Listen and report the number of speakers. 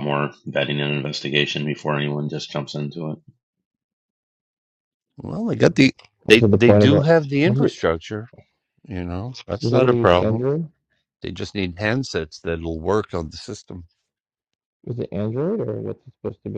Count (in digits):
3